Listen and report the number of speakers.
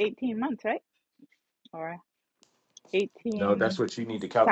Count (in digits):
2